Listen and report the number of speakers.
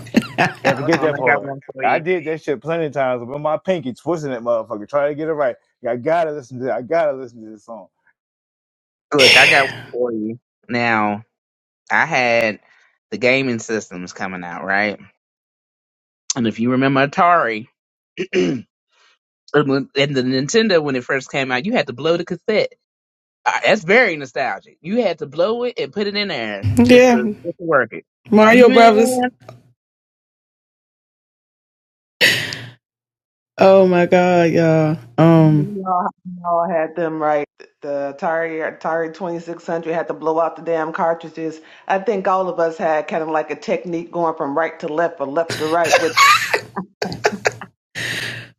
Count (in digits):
4